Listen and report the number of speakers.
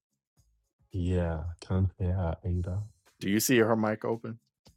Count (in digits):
2